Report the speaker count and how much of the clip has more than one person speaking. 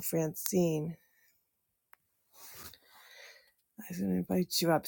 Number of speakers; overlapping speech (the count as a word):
one, no overlap